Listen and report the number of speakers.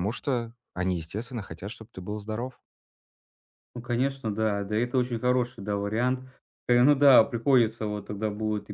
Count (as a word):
two